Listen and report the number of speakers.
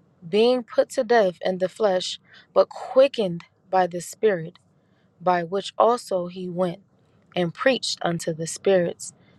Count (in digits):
1